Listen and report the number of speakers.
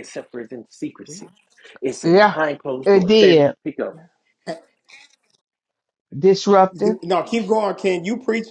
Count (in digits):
3